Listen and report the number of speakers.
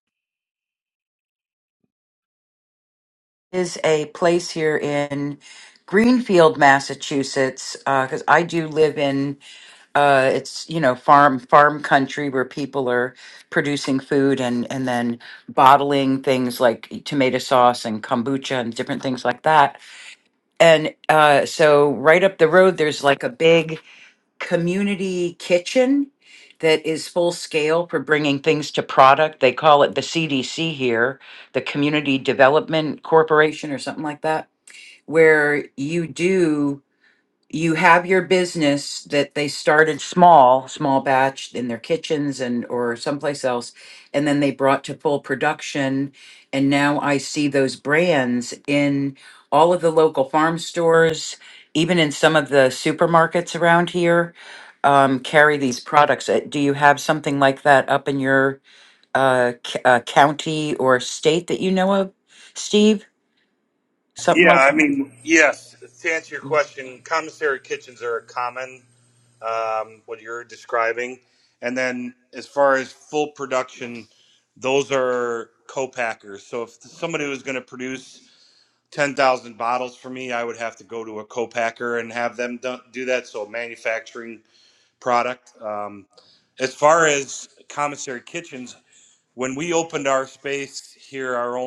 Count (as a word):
two